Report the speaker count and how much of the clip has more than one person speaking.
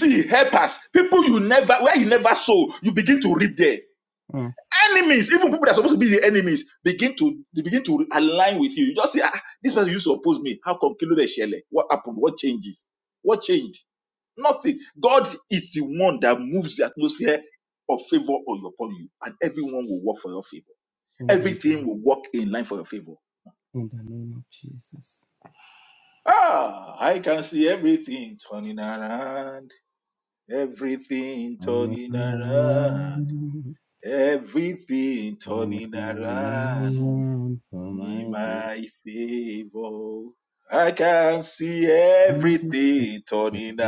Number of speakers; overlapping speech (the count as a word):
two, about 11%